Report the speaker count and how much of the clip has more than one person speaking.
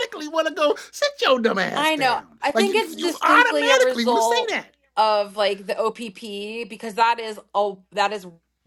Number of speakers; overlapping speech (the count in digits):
2, about 32%